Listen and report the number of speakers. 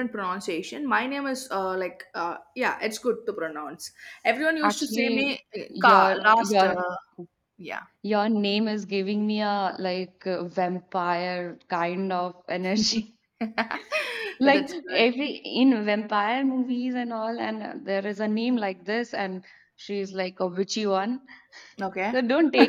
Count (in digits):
2